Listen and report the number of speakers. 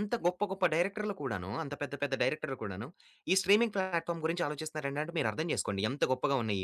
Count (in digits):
1